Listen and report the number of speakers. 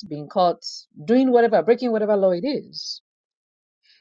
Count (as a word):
one